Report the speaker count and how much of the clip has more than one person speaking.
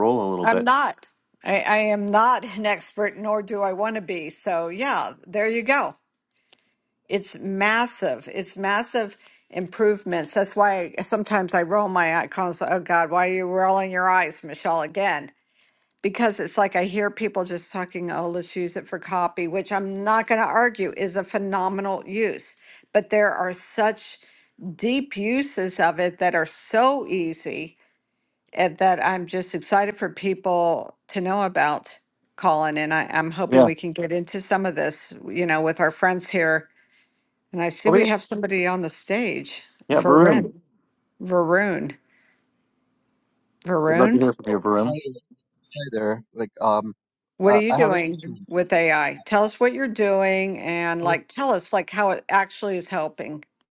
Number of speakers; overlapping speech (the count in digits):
3, about 6%